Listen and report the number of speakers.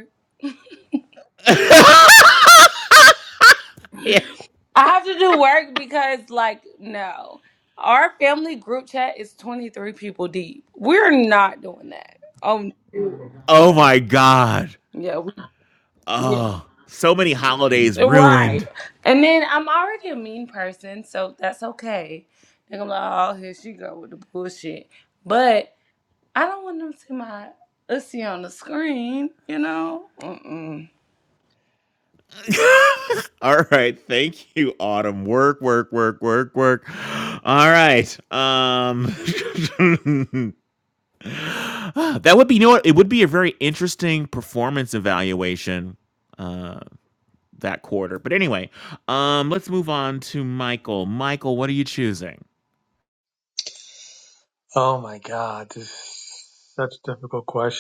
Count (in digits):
3